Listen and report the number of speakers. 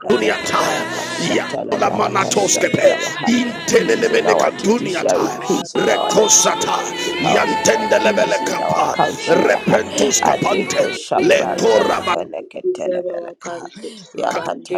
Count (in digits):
3